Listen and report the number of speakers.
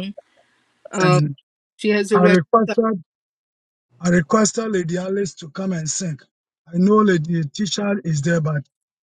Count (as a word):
two